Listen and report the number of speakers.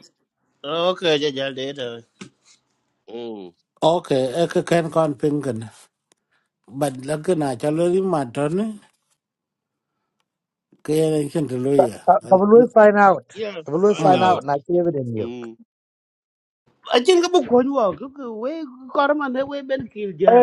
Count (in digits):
4